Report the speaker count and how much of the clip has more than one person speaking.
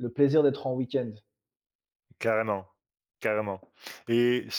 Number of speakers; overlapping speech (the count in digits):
2, no overlap